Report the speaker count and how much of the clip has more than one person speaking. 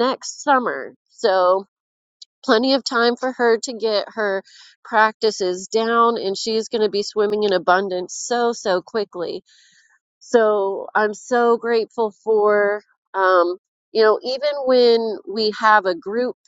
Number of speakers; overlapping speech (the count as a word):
one, no overlap